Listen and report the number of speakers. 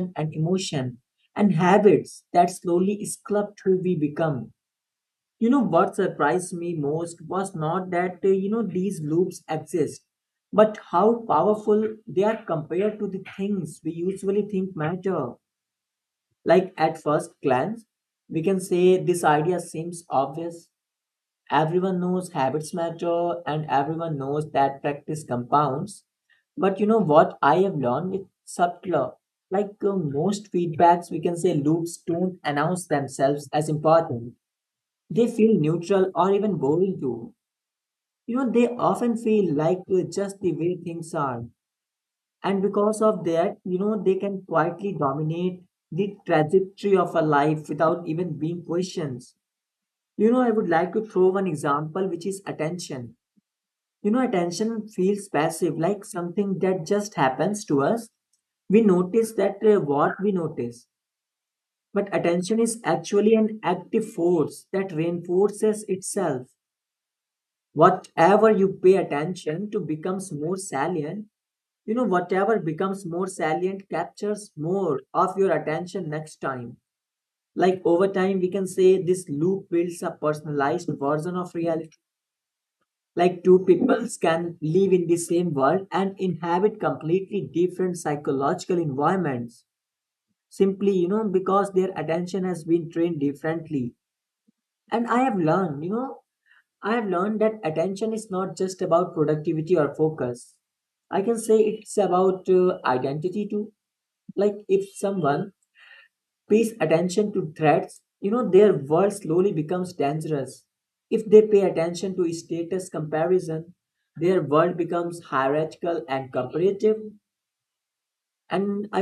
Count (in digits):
1